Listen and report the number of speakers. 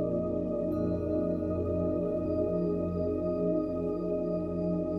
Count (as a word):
zero